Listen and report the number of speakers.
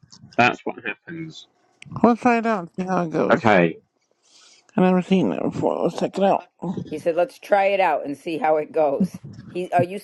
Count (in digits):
3